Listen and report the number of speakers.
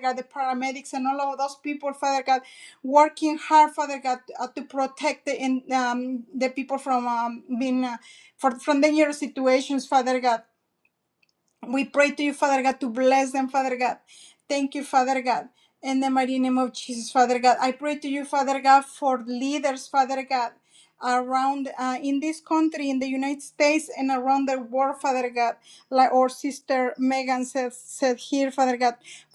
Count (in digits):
1